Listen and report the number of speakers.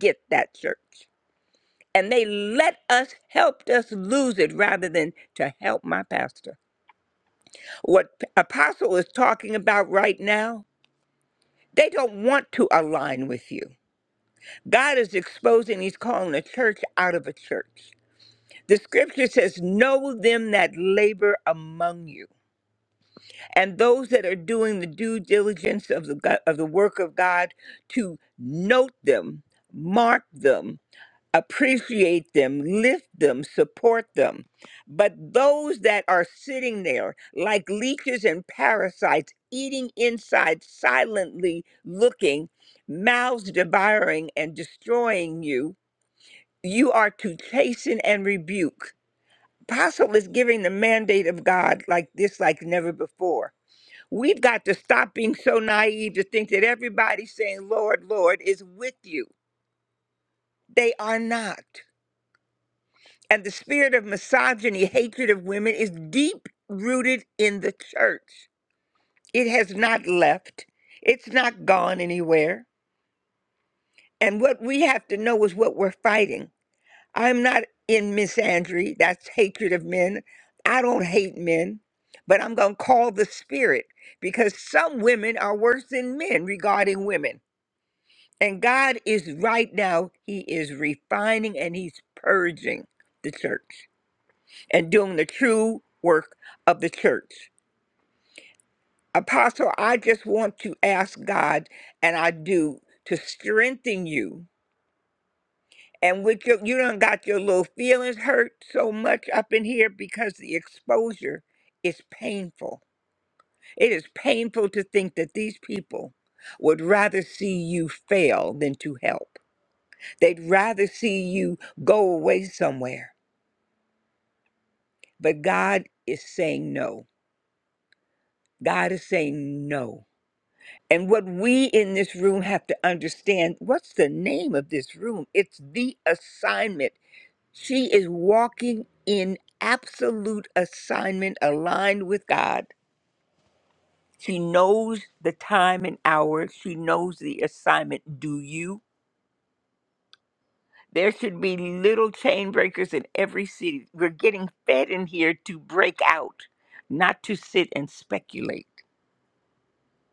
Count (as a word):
one